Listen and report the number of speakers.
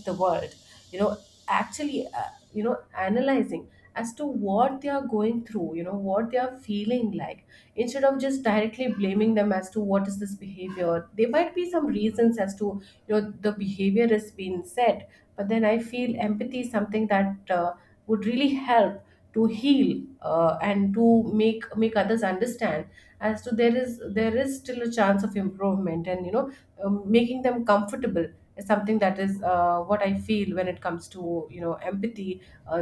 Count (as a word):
one